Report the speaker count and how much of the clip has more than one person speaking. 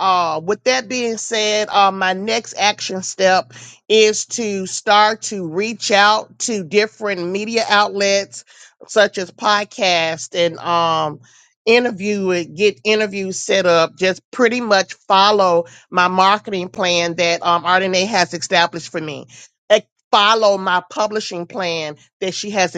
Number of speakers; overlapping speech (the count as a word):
one, no overlap